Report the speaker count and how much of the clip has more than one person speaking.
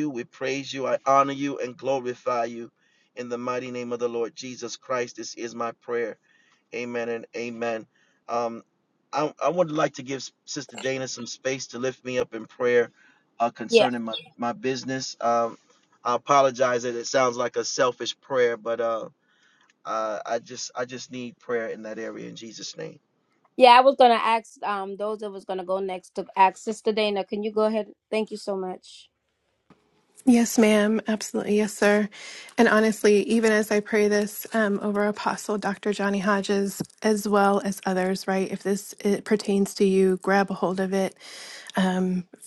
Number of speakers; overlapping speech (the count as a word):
three, under 1%